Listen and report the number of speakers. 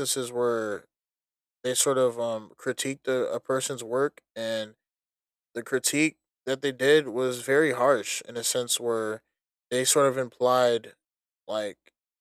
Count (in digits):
1